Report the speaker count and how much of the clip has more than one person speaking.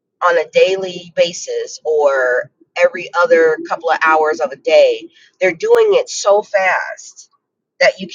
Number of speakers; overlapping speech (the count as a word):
one, no overlap